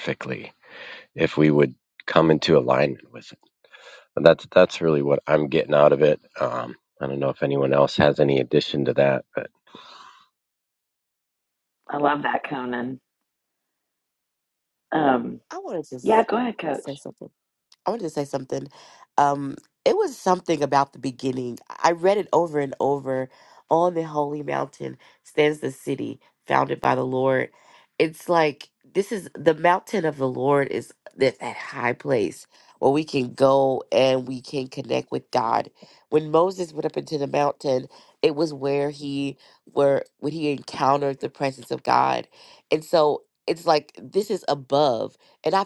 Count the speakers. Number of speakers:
3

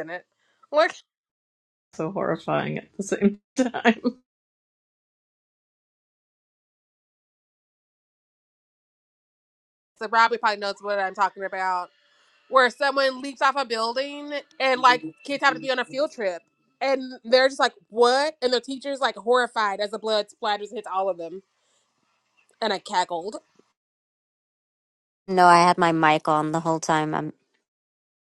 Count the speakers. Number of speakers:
3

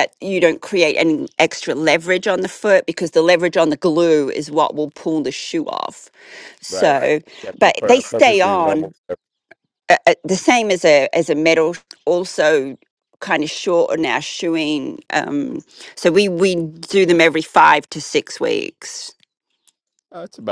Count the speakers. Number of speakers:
2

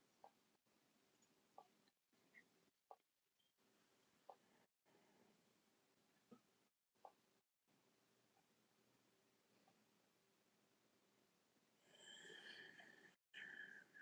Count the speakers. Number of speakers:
0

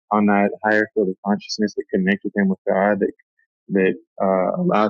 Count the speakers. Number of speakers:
1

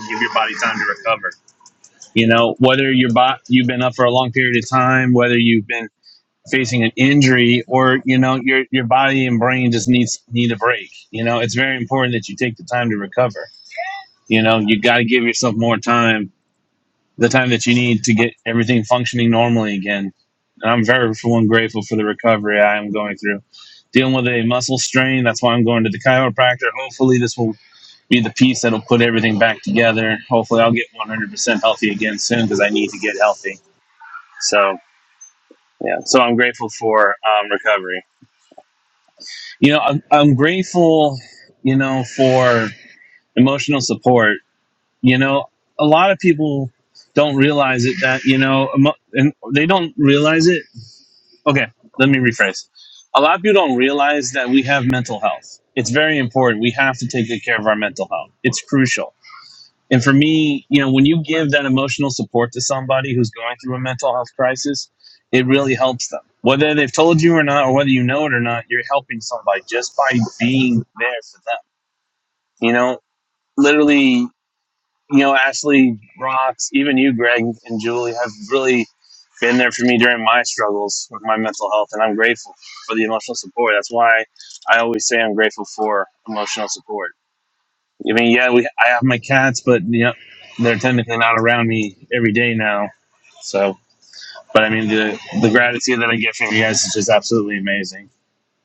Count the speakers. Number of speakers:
1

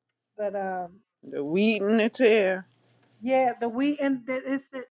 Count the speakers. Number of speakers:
2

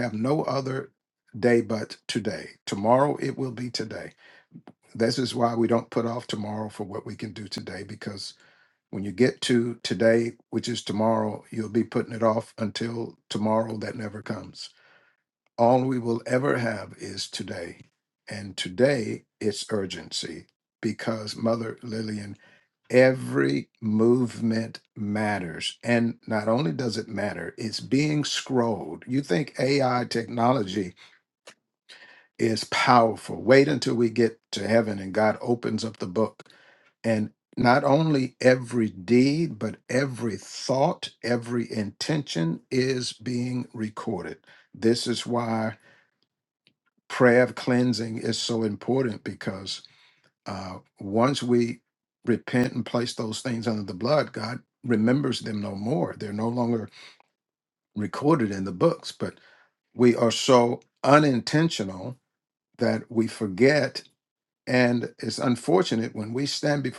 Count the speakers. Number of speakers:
1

